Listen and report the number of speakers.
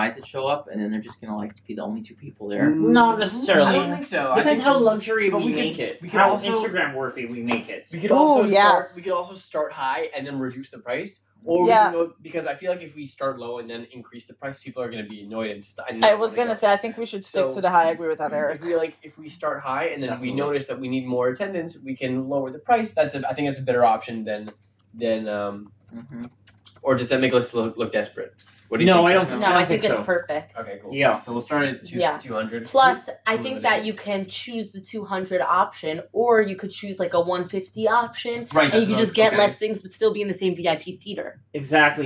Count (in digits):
5